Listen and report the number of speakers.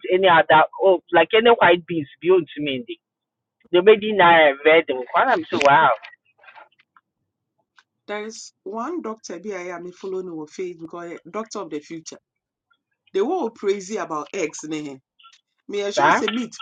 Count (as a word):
two